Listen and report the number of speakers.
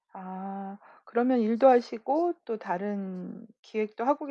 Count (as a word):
one